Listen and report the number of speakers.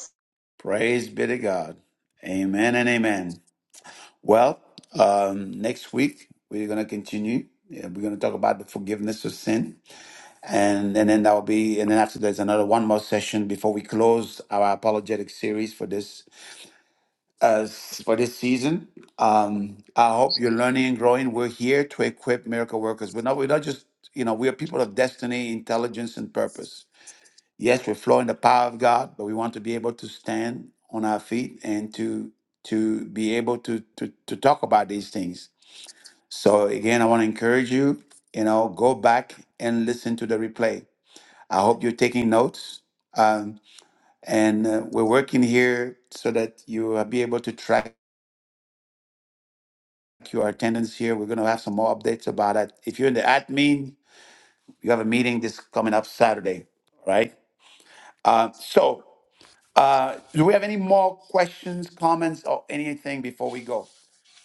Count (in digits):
1